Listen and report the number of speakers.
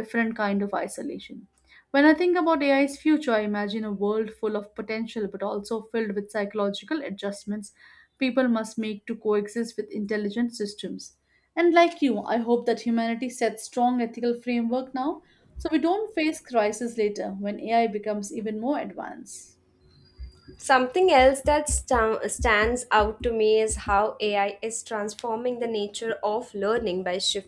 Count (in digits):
2